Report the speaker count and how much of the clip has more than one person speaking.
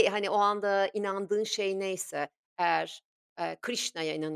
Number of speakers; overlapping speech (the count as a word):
one, no overlap